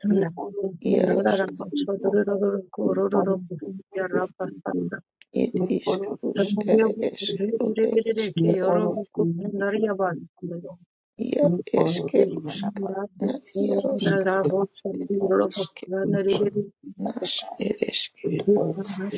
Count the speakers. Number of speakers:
3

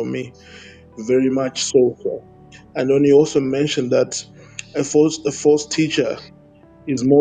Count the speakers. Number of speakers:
1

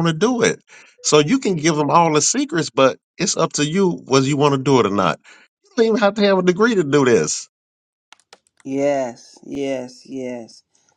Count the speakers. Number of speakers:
2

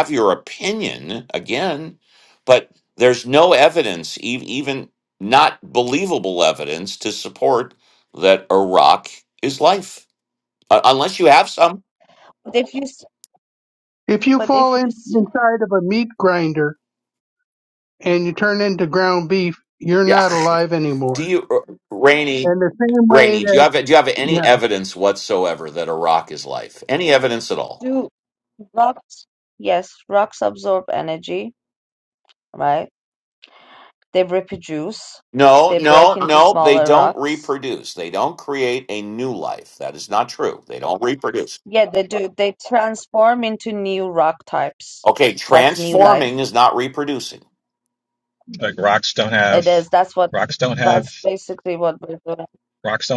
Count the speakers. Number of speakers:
4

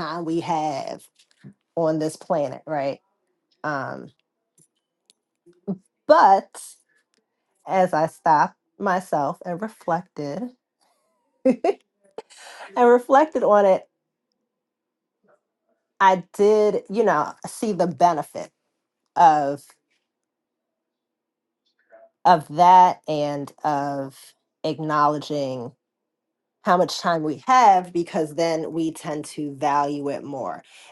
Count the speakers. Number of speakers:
1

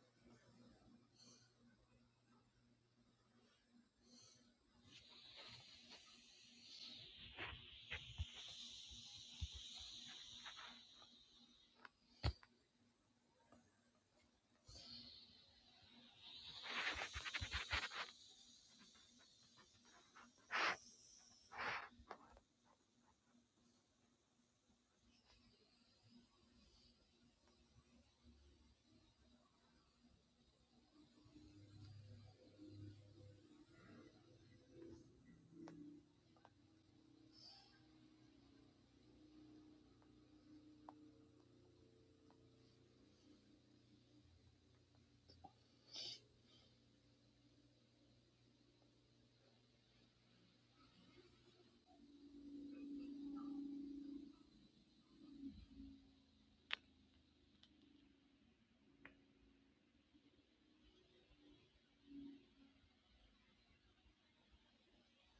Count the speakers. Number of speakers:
0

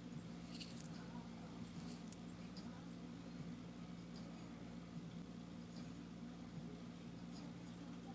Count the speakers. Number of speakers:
0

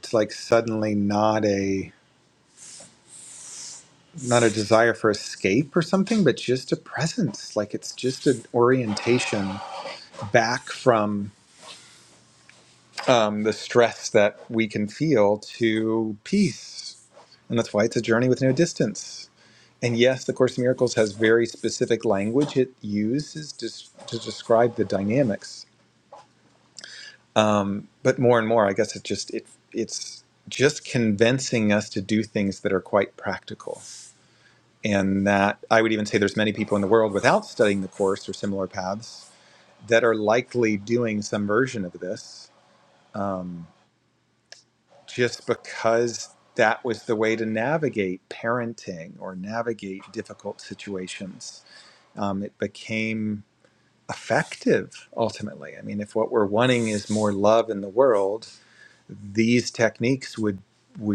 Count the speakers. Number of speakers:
1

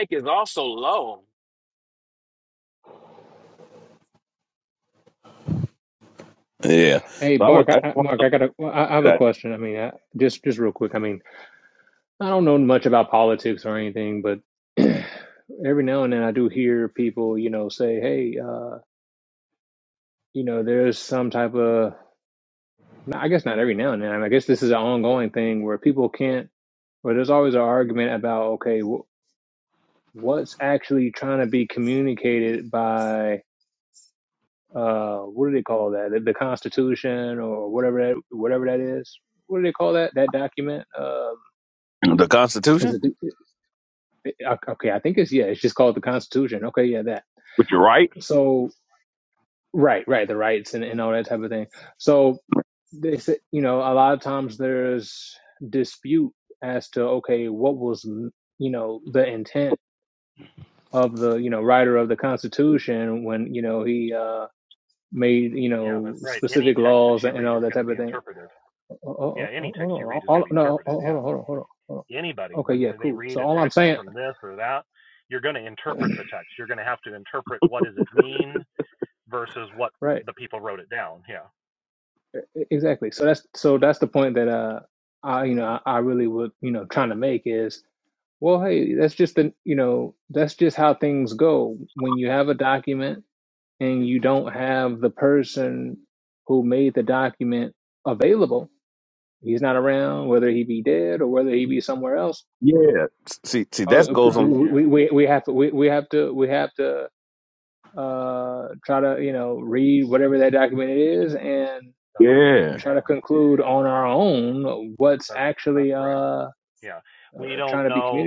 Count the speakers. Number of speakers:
4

